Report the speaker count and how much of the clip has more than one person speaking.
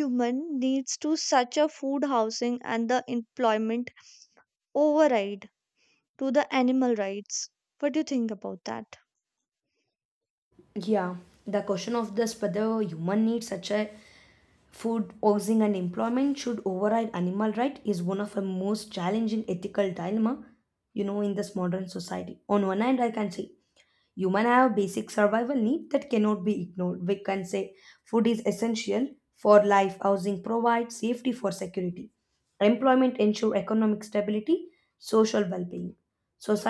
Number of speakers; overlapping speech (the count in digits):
2, no overlap